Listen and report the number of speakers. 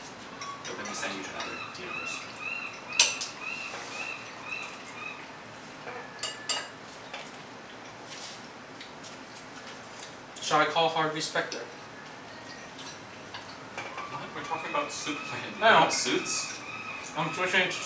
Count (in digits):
2